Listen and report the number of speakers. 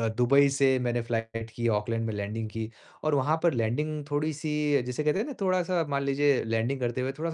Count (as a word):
one